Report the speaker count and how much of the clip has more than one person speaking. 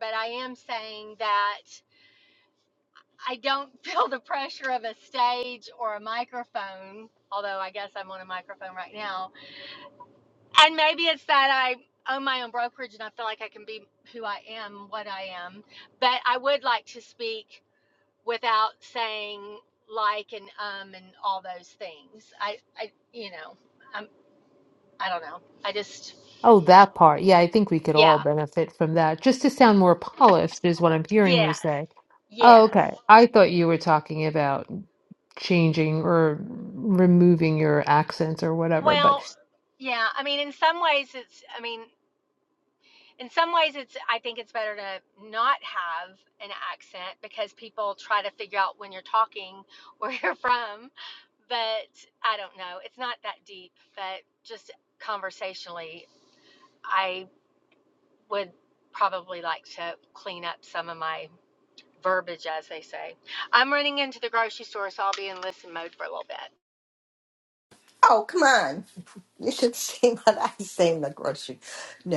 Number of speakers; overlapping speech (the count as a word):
three, about 2%